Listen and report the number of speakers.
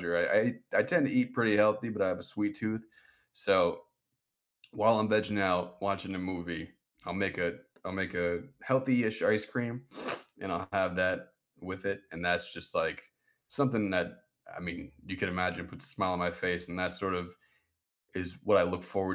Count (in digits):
1